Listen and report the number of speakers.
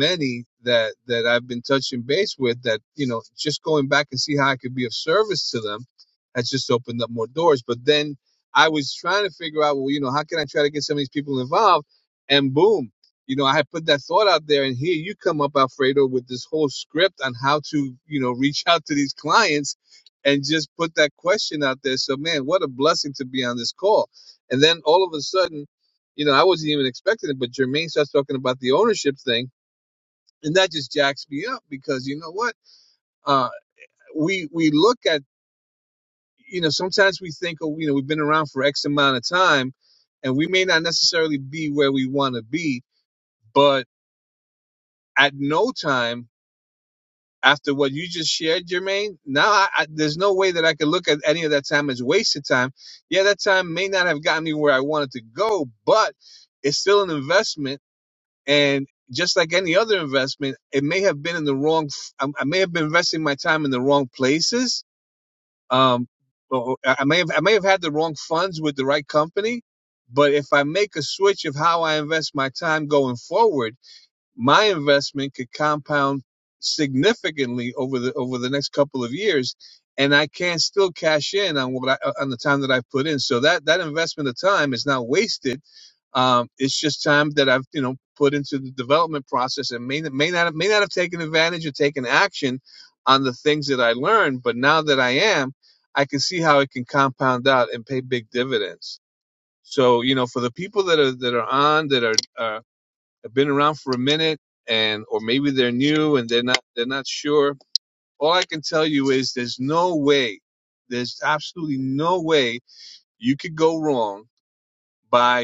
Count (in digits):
1